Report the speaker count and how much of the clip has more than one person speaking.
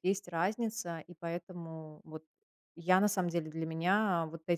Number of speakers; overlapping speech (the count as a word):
one, no overlap